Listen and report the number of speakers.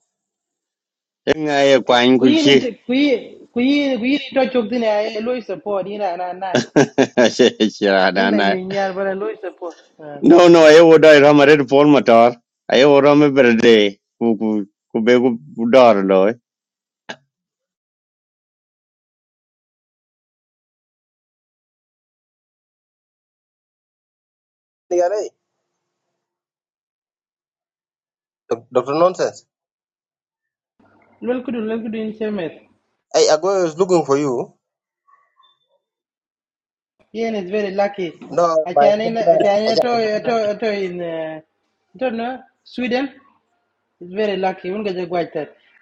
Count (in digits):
3